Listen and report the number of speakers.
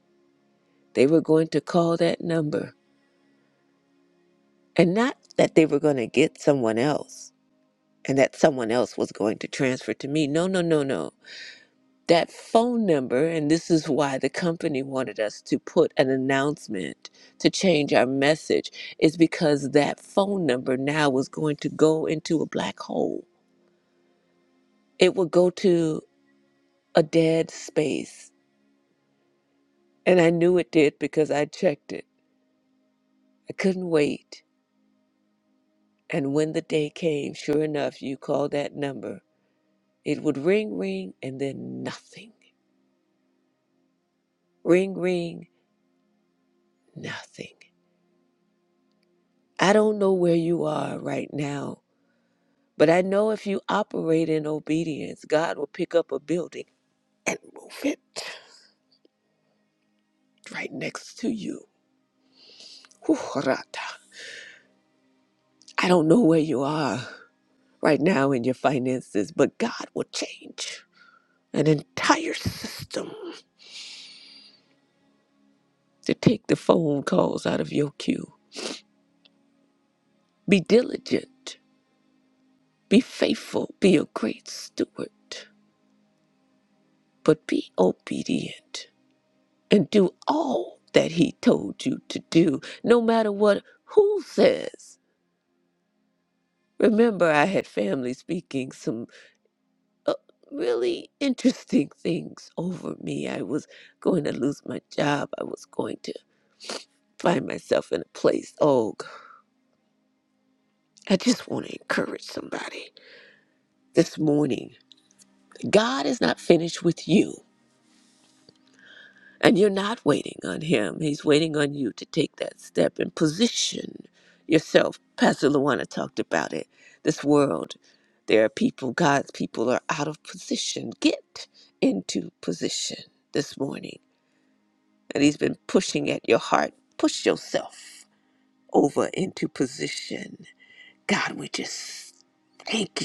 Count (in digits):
1